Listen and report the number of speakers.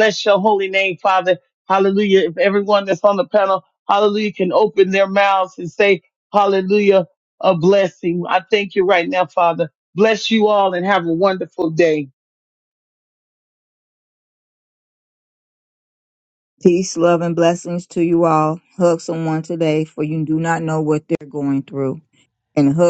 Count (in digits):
2